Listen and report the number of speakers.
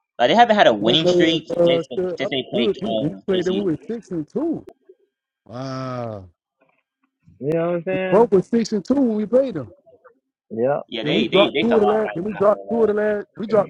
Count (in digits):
3